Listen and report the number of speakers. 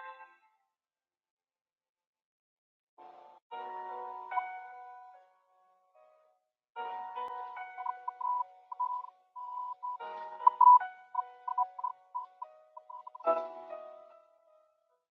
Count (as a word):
zero